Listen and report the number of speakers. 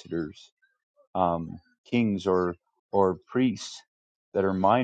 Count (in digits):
1